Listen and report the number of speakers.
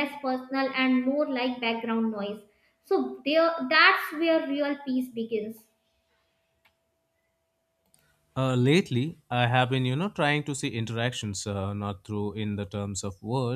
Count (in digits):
2